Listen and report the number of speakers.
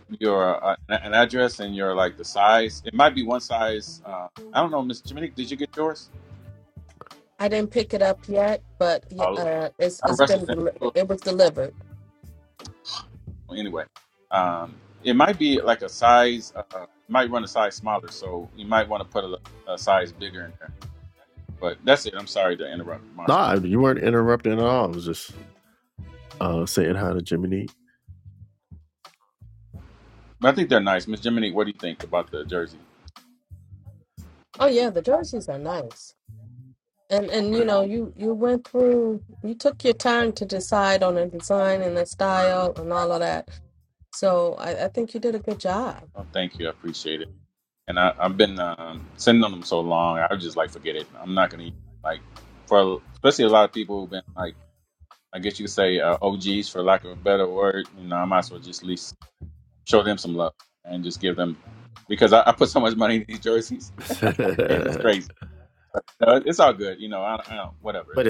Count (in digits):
3